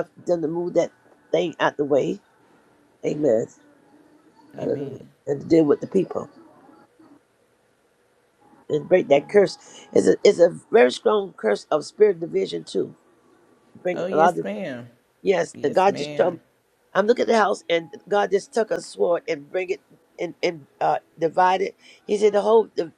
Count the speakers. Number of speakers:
2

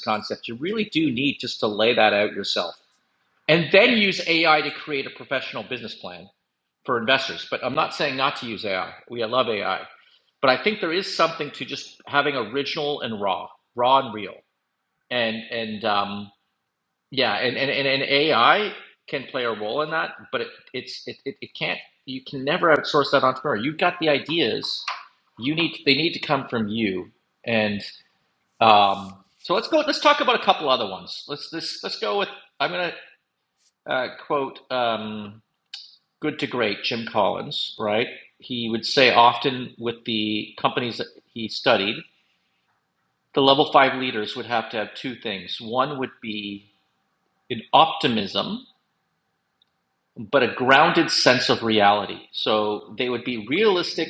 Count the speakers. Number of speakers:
1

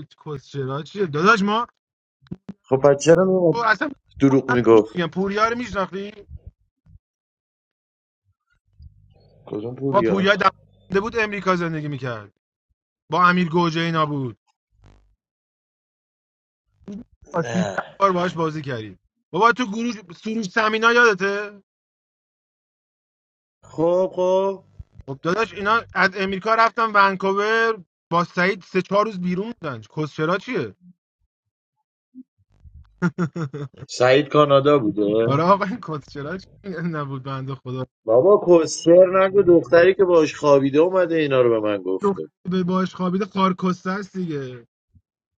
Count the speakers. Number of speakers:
2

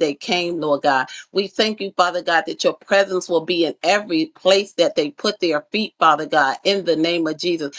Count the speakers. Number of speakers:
1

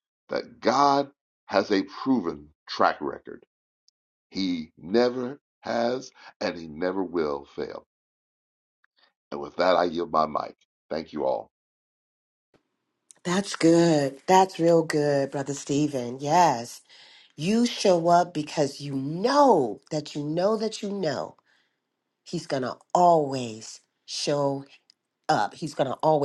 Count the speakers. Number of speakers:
2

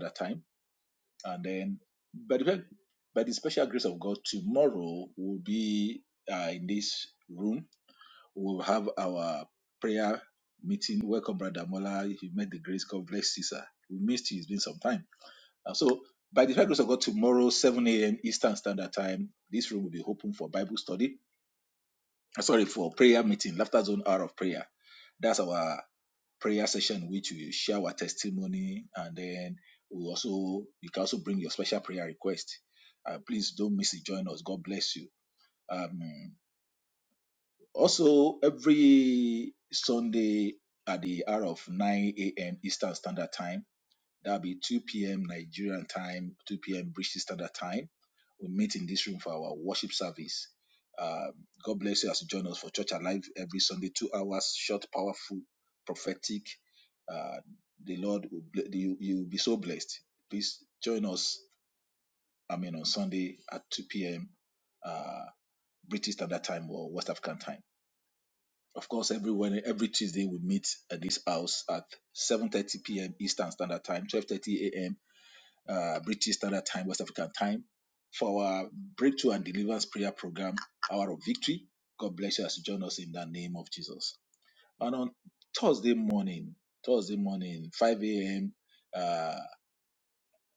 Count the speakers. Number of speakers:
1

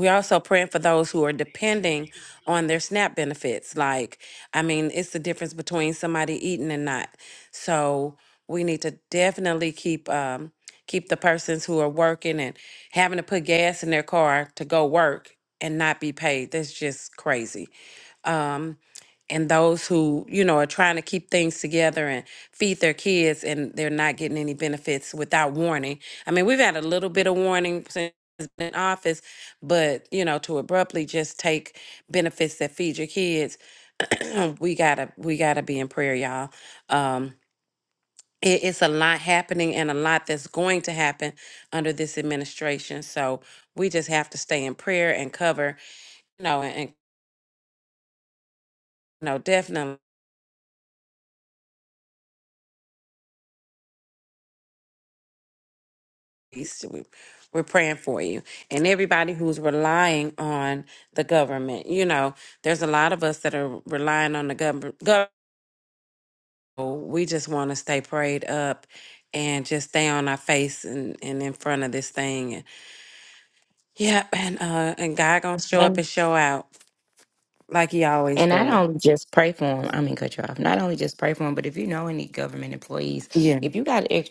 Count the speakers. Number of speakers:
2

